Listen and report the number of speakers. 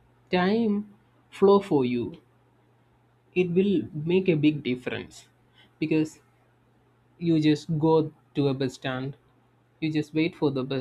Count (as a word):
one